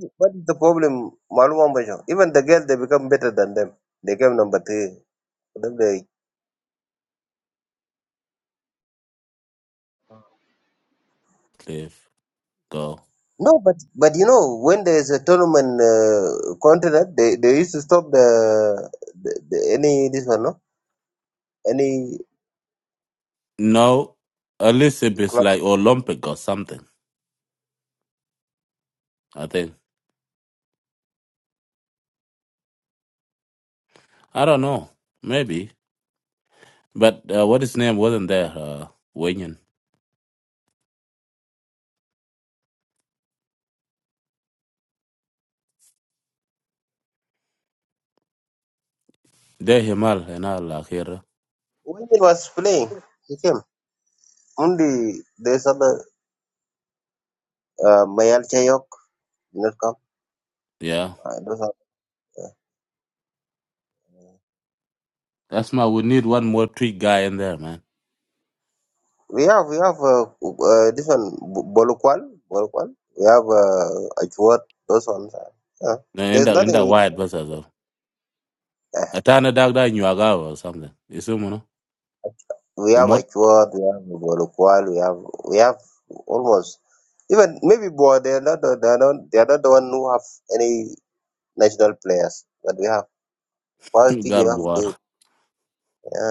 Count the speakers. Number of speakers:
2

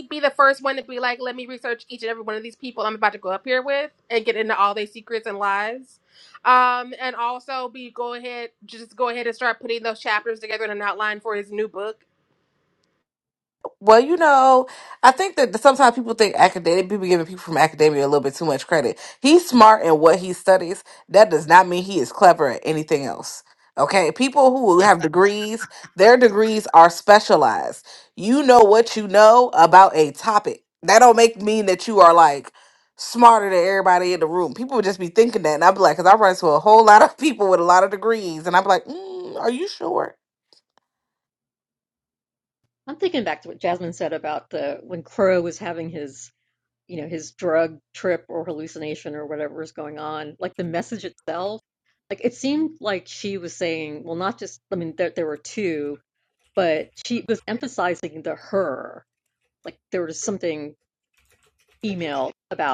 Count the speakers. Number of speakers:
3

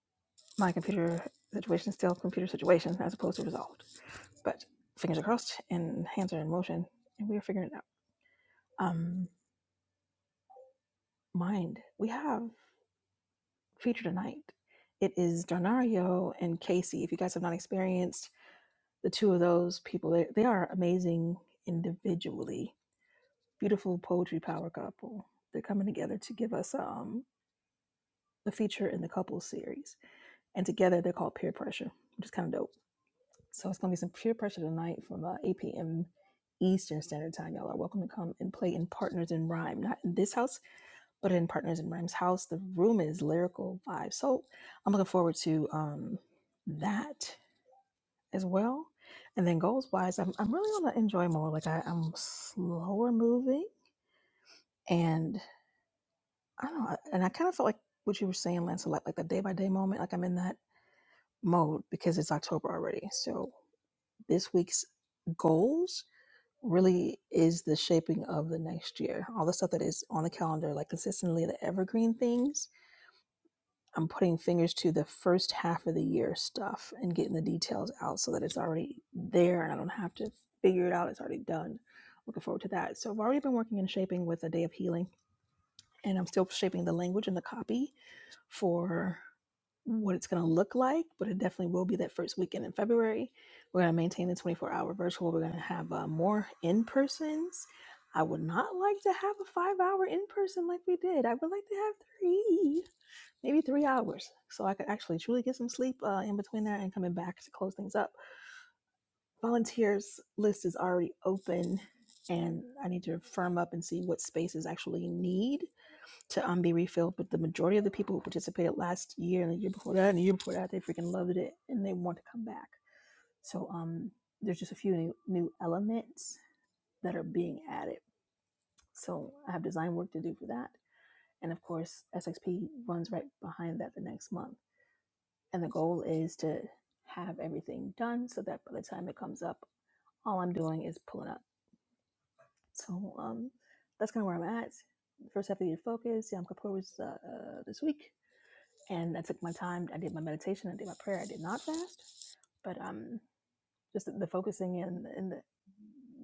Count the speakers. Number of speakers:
1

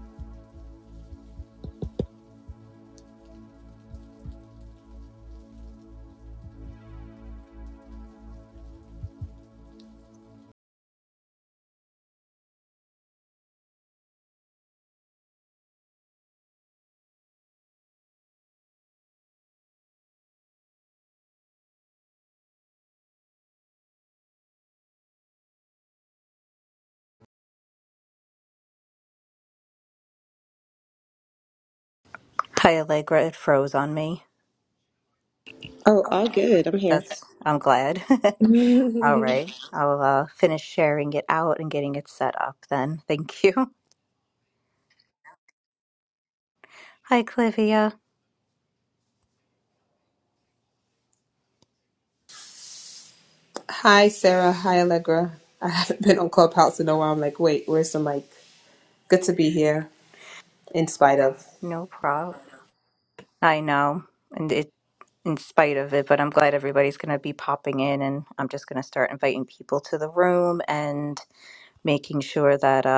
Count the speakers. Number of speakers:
3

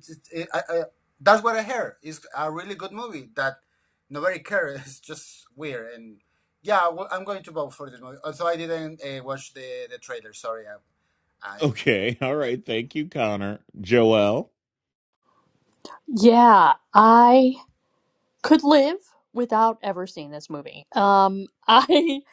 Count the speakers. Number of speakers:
3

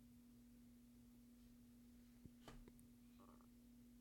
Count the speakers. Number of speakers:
0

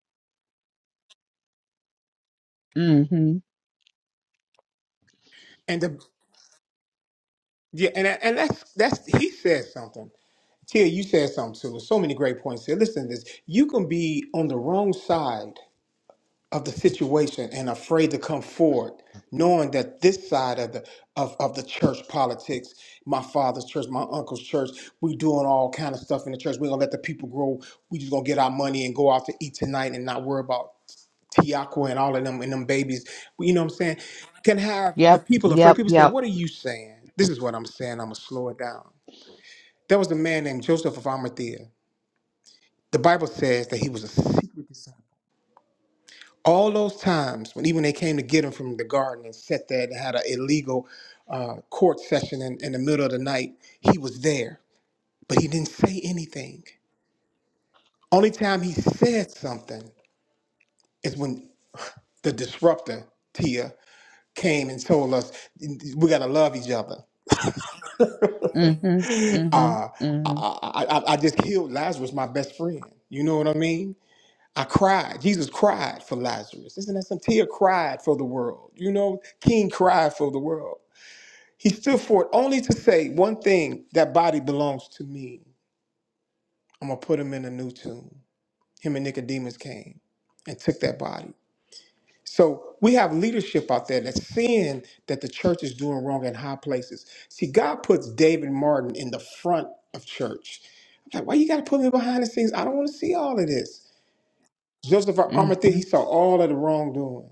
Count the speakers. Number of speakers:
2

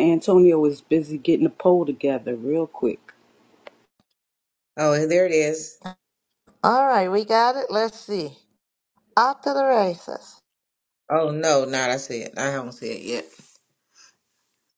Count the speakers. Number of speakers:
3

